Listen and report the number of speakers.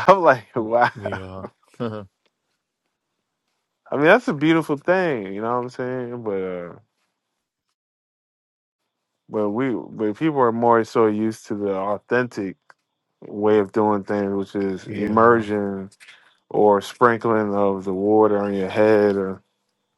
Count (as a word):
two